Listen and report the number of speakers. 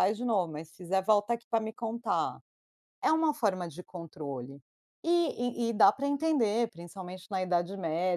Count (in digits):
1